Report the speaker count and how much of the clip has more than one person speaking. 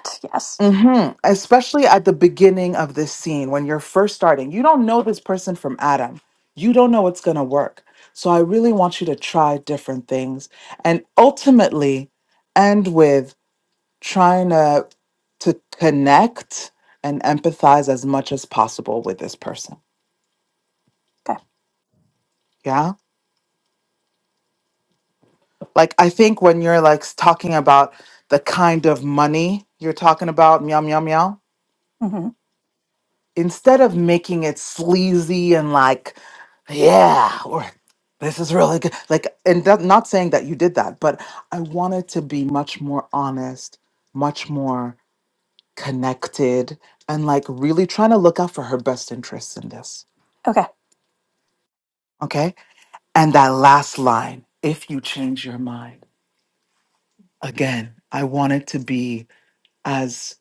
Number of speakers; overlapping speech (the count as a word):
two, no overlap